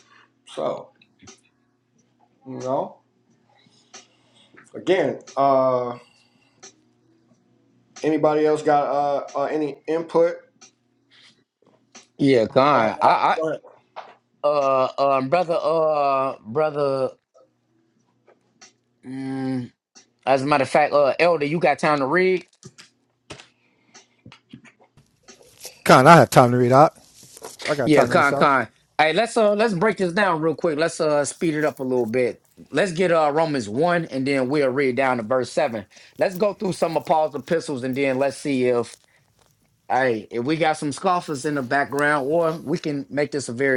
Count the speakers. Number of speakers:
three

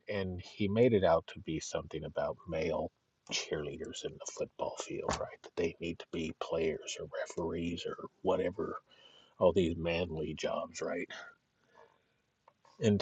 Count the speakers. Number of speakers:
one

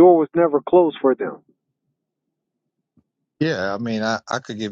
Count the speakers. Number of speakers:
two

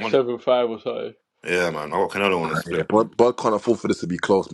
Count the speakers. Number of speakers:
three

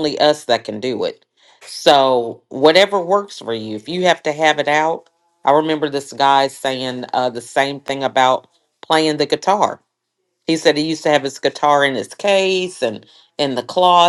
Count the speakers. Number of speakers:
one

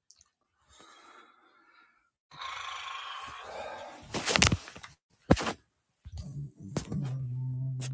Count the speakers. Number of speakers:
zero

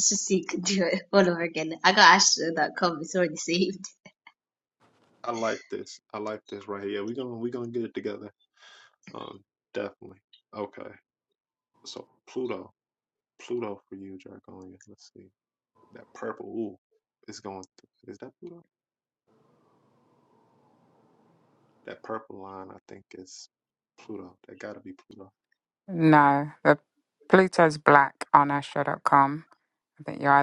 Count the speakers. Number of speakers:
three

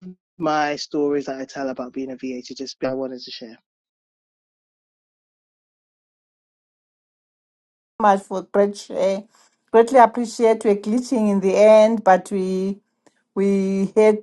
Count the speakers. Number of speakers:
two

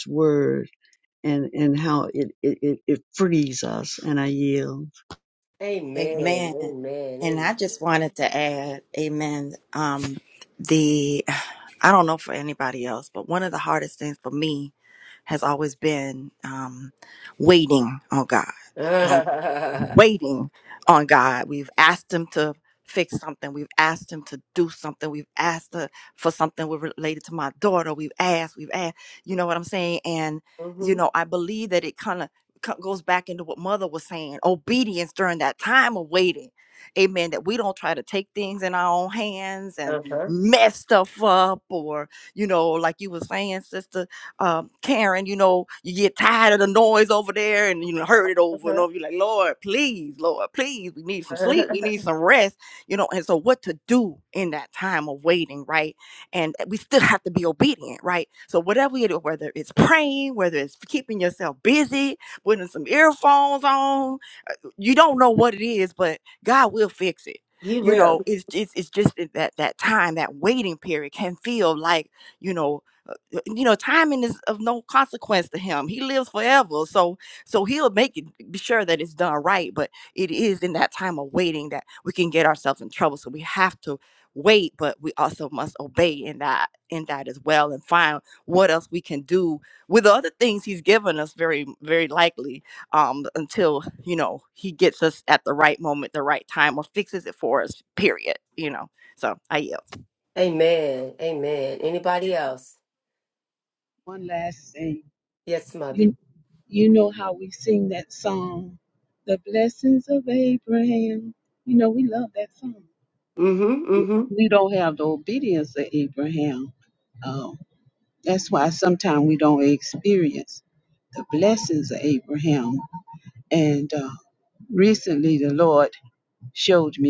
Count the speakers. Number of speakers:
four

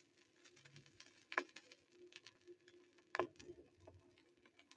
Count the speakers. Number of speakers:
zero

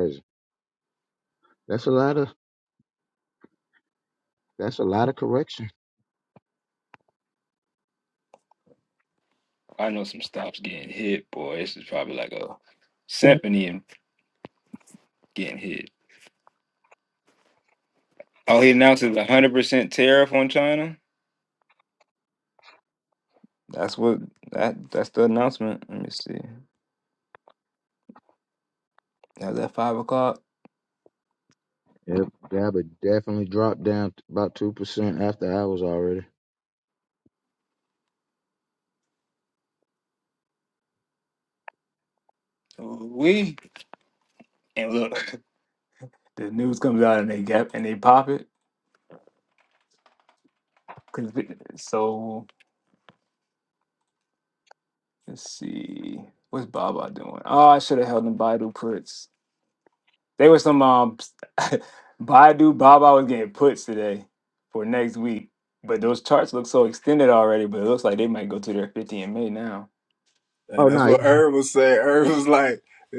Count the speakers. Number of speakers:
three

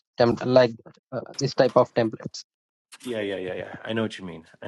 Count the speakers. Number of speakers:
two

